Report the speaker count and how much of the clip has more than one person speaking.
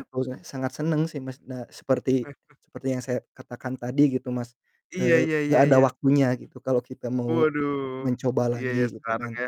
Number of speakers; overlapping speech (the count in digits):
2, about 22%